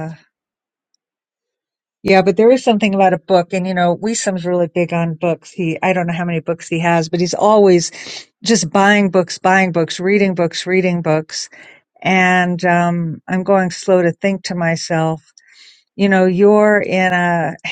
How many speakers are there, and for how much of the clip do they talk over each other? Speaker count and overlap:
1, no overlap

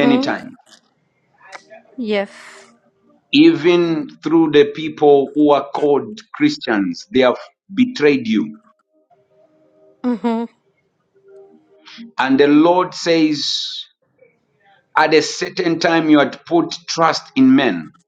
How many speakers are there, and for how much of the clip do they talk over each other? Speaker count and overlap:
2, about 2%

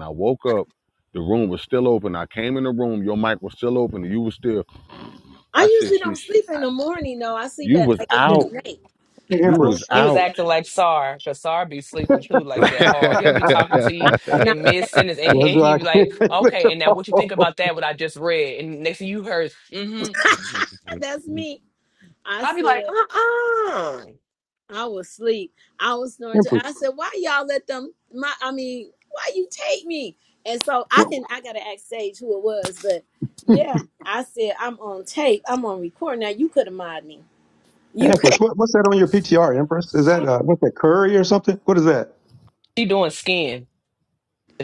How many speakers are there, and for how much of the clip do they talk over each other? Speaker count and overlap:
4, about 15%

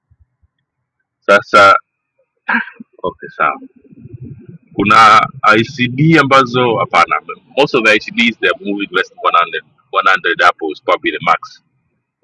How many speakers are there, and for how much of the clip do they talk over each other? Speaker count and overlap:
1, no overlap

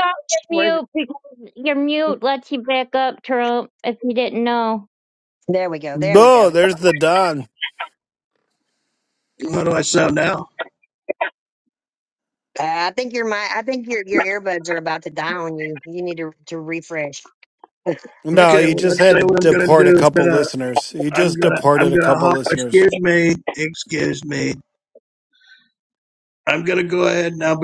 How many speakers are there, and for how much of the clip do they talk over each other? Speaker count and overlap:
4, about 17%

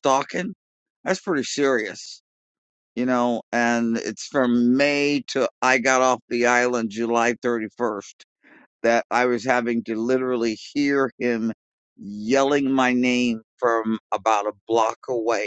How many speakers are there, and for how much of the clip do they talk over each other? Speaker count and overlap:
1, no overlap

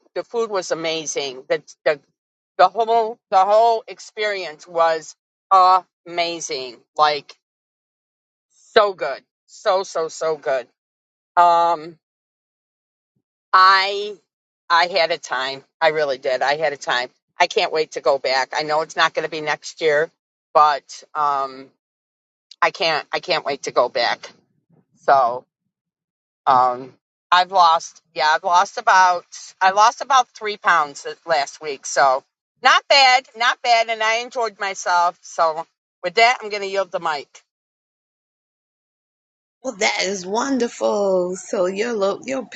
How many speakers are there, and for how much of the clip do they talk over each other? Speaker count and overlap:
2, no overlap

